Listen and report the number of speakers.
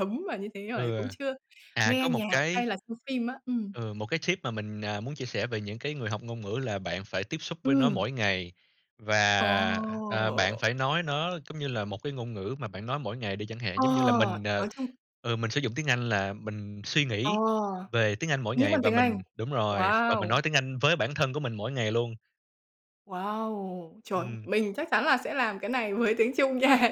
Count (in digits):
2